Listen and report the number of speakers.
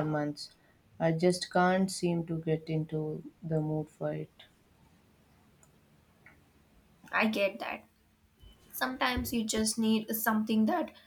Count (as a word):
two